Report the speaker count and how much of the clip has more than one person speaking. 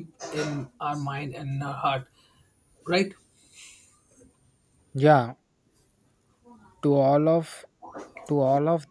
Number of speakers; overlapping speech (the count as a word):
two, no overlap